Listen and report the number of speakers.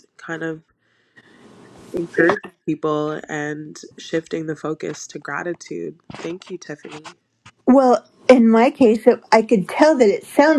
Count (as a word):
two